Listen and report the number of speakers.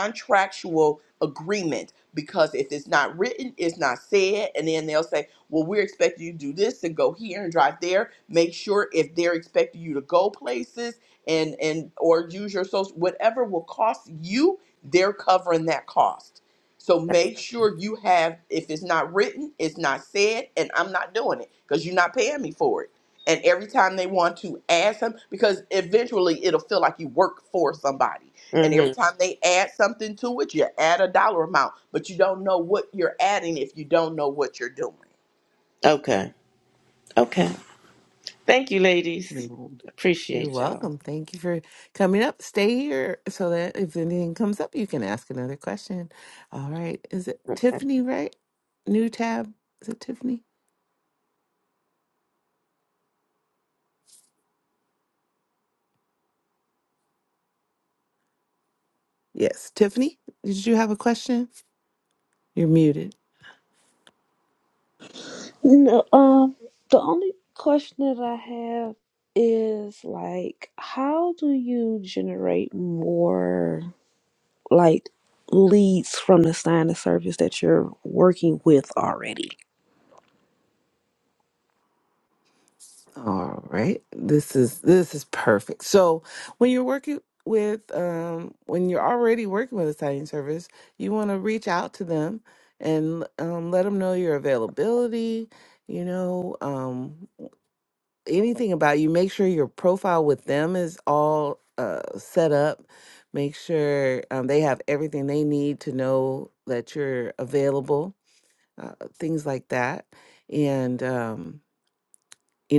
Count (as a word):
four